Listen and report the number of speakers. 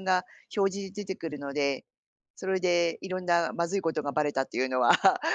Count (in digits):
1